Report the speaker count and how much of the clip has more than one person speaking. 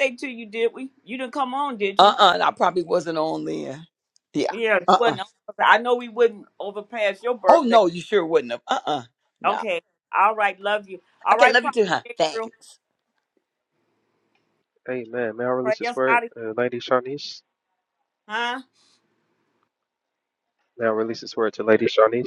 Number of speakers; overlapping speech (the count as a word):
three, about 13%